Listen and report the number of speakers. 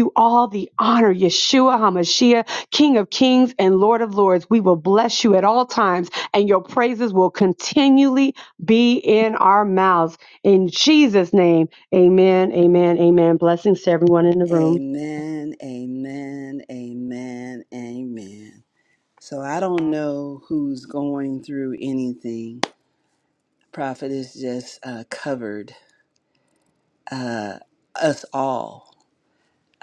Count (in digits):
2